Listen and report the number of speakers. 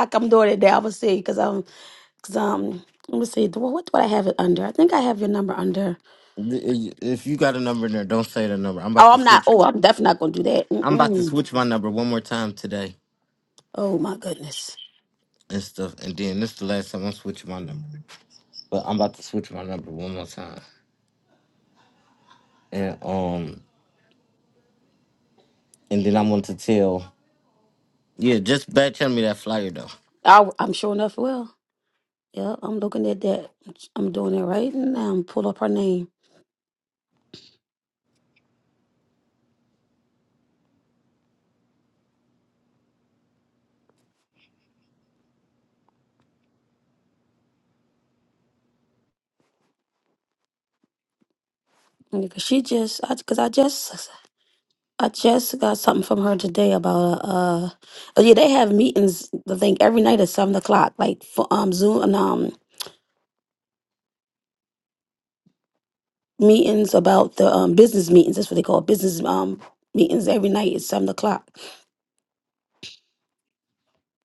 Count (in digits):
2